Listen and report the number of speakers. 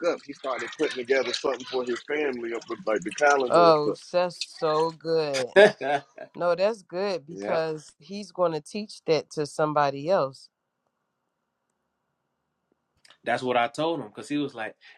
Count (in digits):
3